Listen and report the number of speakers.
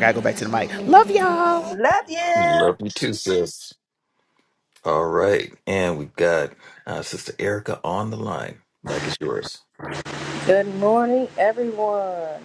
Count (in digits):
4